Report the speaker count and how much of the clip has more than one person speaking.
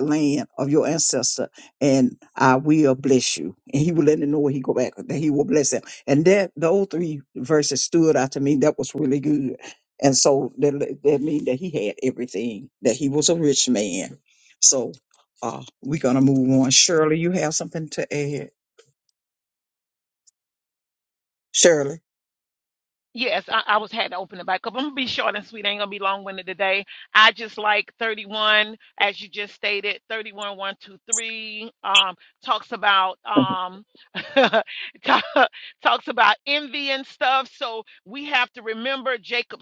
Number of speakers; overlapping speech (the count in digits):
2, no overlap